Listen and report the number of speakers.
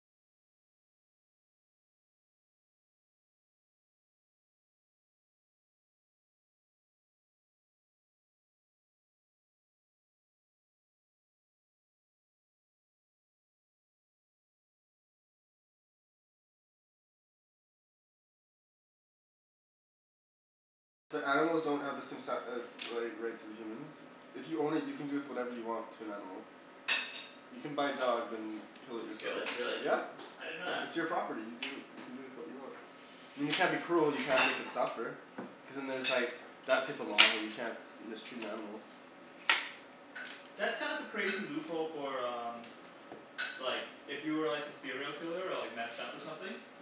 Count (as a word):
two